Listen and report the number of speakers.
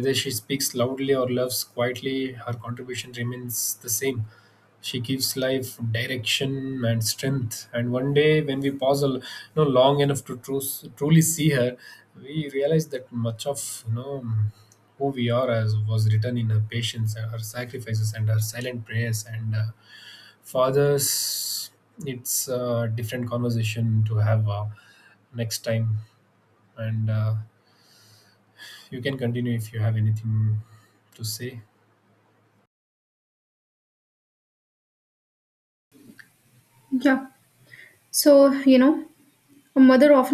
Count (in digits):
2